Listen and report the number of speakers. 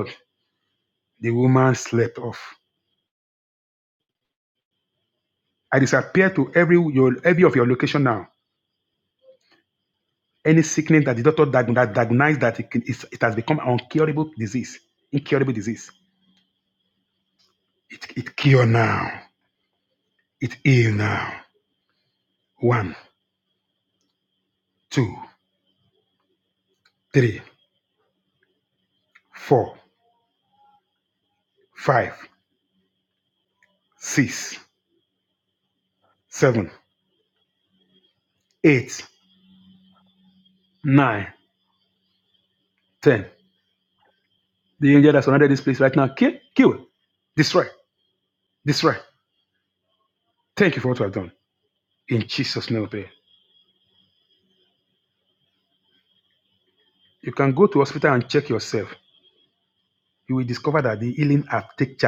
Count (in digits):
1